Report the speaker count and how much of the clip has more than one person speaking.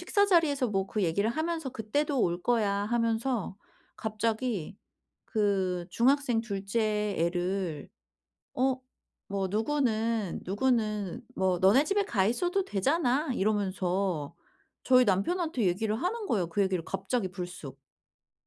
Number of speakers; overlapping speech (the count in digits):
1, no overlap